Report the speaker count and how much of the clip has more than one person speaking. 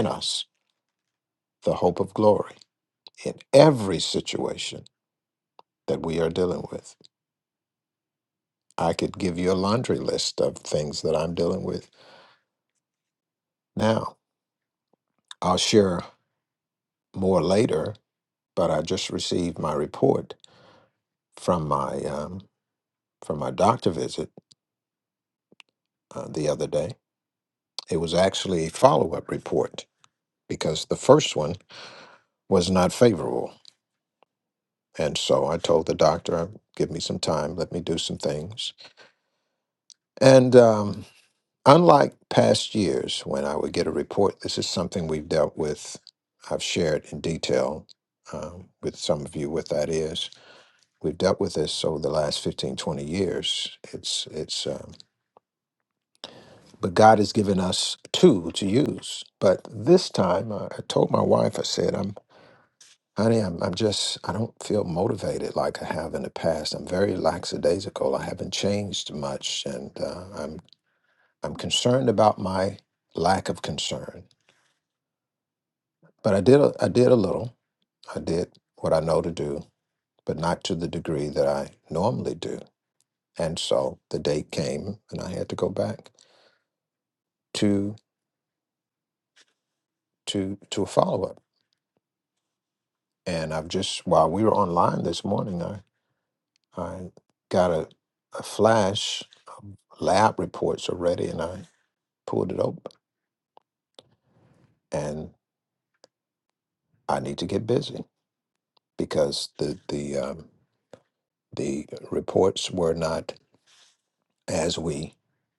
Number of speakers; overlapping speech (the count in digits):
1, no overlap